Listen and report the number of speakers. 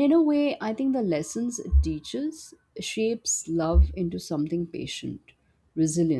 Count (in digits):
1